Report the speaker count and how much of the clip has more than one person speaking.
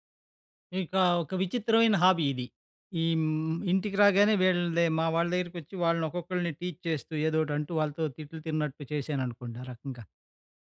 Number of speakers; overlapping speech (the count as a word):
one, no overlap